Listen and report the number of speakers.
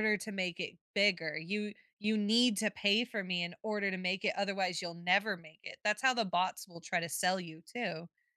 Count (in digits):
1